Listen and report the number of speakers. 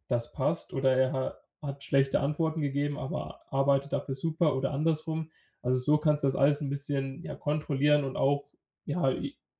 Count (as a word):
one